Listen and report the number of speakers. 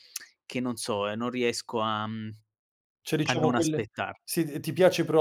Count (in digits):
2